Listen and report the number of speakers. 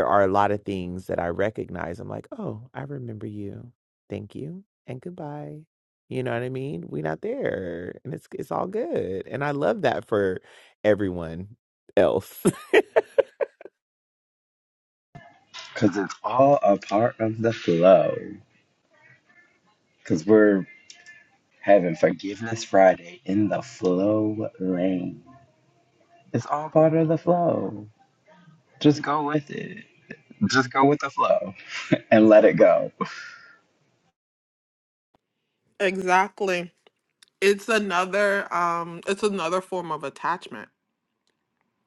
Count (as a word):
three